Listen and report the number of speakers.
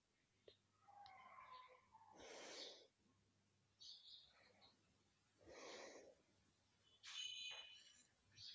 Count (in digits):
0